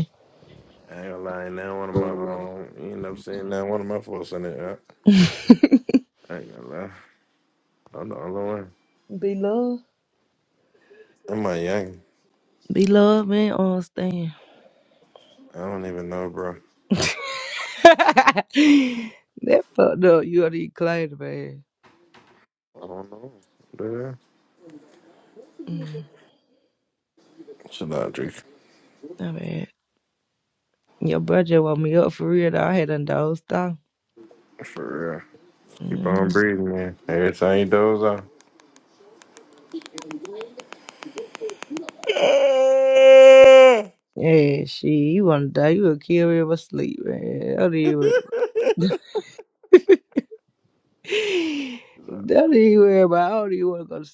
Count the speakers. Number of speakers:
2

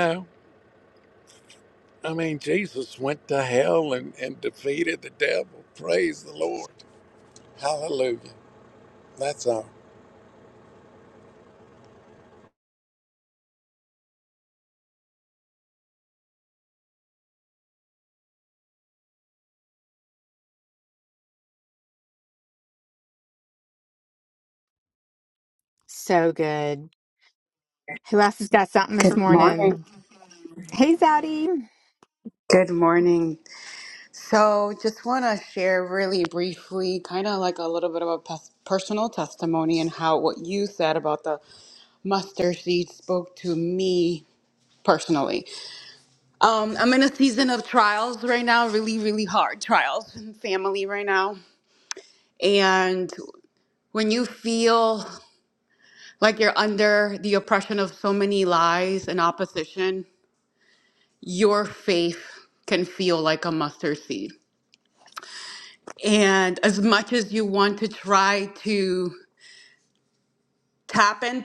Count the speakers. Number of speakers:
3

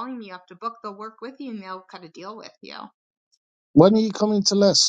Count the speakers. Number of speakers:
2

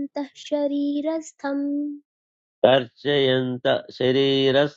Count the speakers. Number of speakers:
2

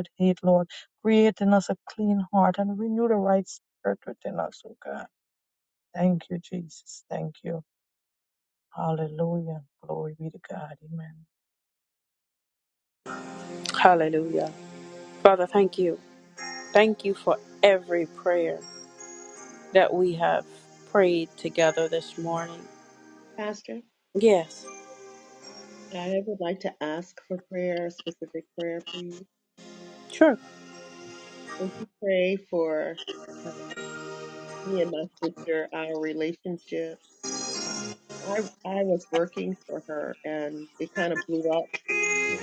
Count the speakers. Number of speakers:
3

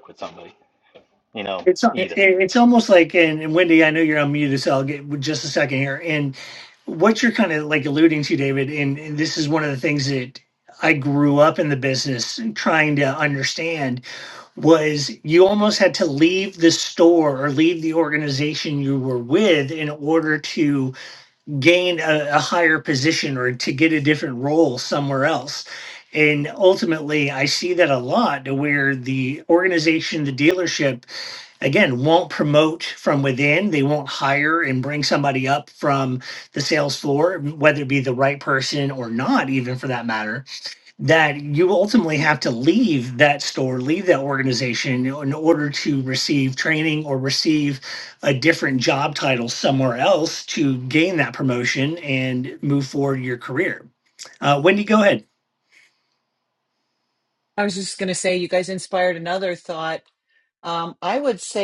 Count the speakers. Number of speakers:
3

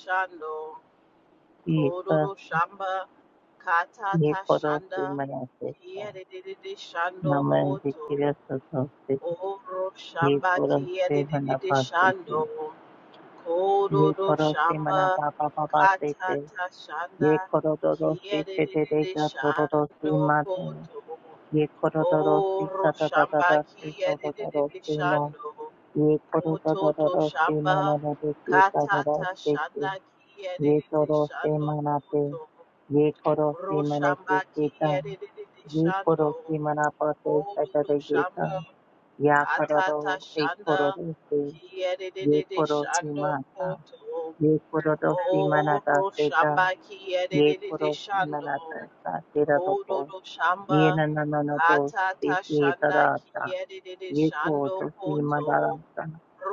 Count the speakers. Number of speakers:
2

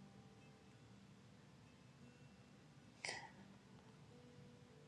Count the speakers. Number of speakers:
0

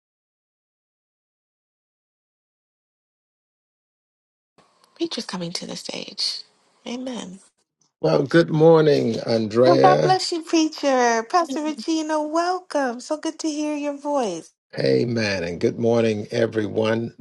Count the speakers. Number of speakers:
2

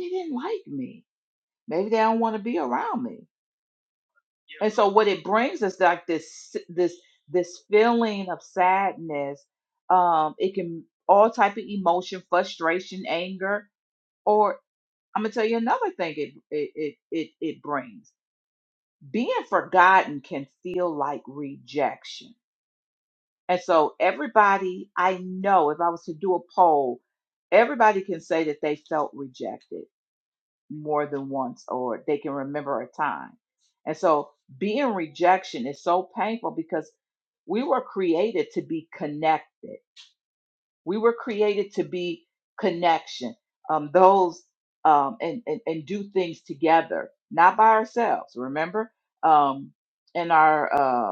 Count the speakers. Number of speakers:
1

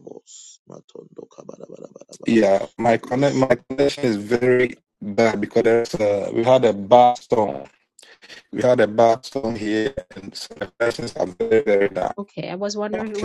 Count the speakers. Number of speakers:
3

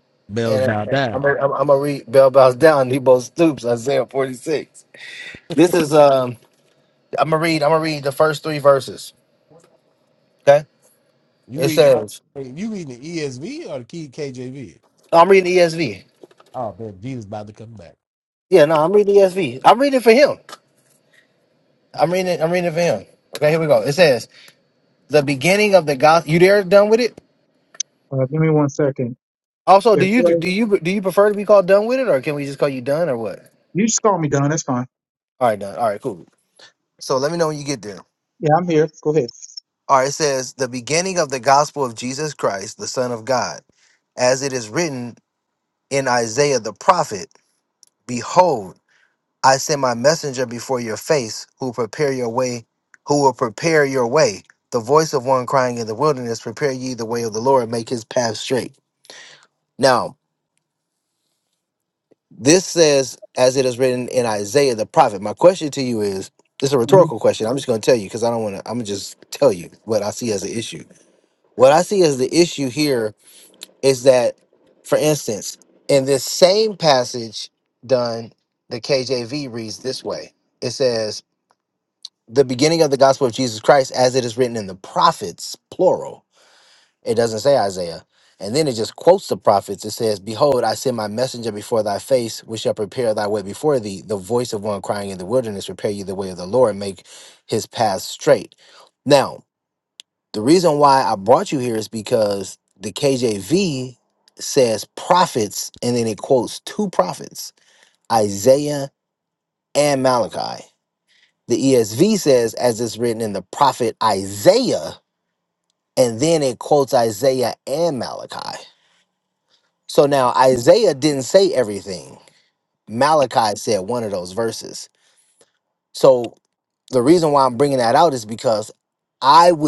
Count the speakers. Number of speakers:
3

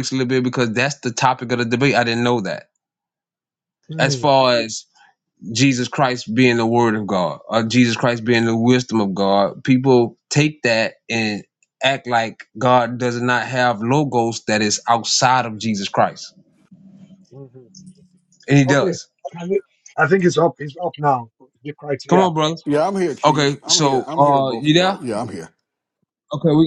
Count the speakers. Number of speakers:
3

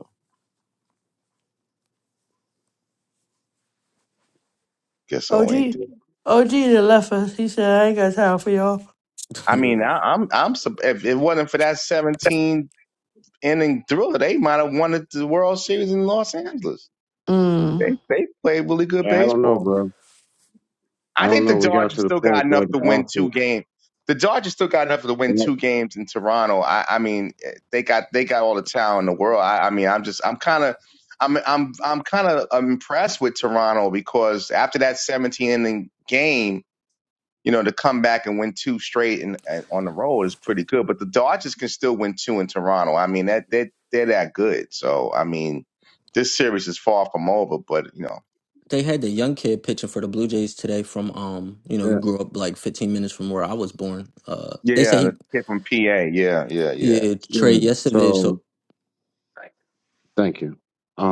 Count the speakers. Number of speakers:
4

